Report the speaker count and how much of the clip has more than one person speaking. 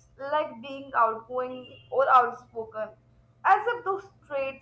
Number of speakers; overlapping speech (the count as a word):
one, no overlap